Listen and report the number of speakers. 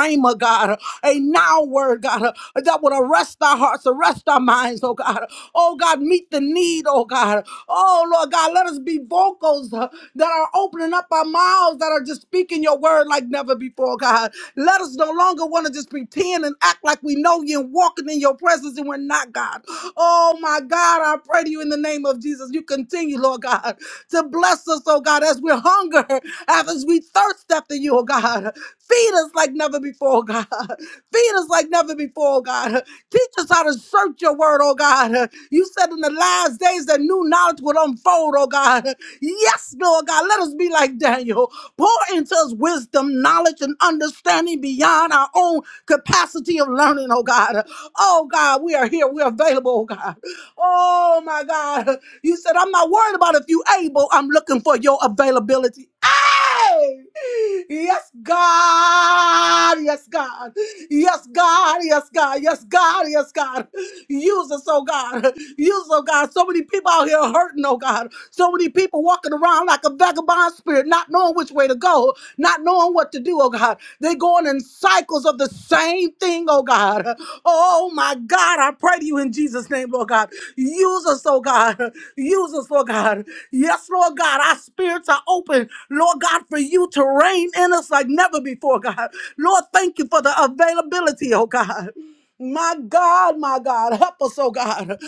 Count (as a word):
one